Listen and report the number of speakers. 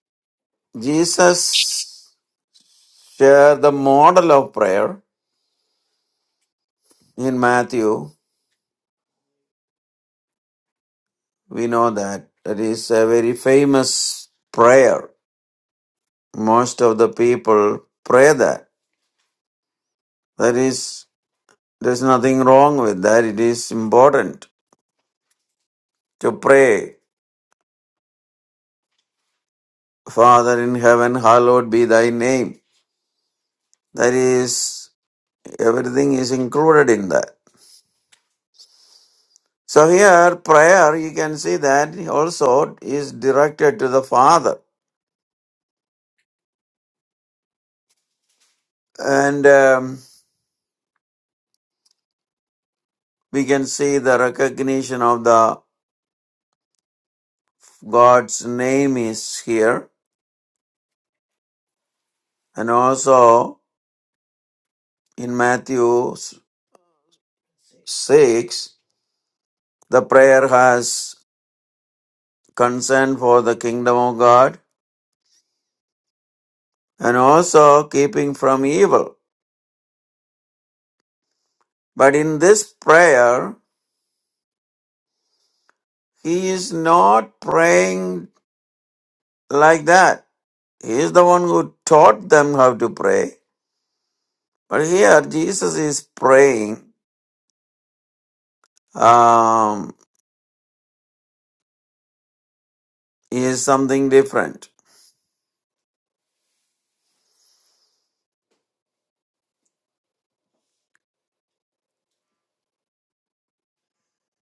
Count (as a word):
one